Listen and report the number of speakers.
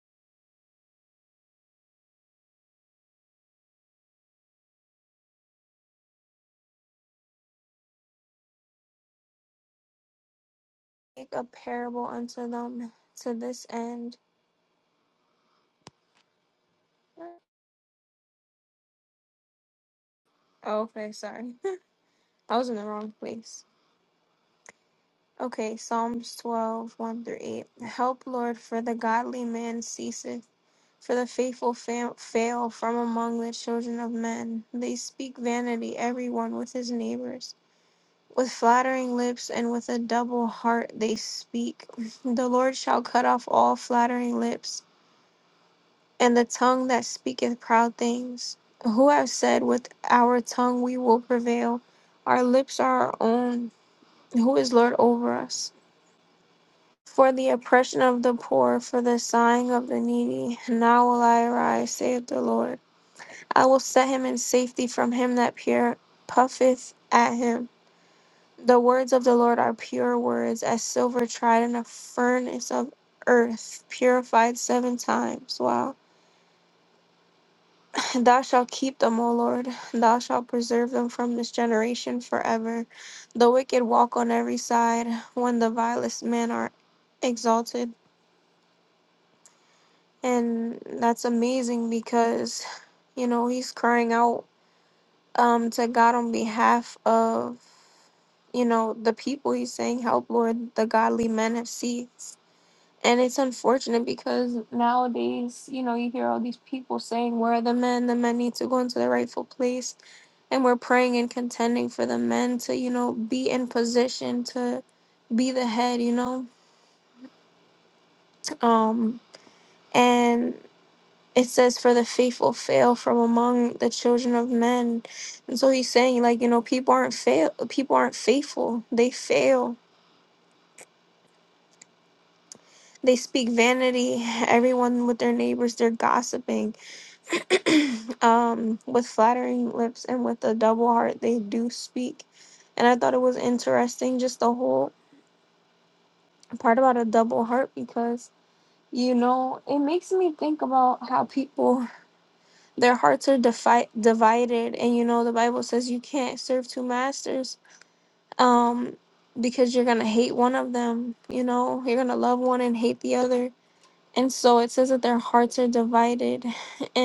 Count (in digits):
1